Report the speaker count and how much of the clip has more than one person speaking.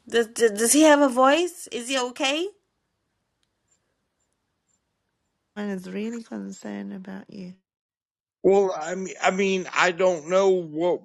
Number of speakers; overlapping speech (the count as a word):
three, no overlap